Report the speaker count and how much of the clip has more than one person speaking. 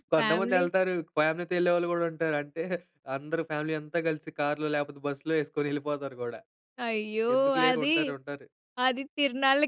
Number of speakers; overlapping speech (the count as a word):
two, about 12%